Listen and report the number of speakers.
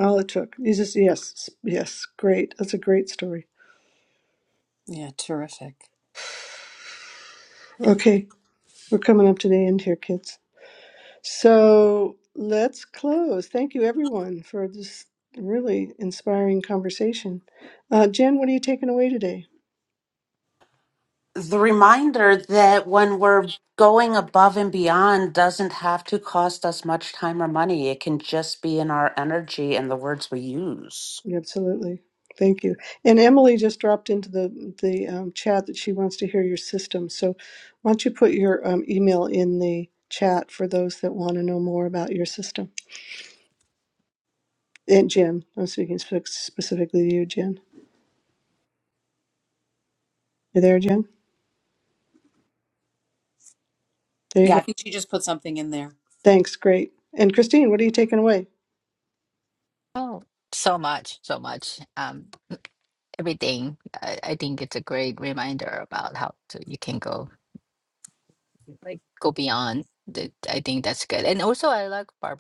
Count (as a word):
four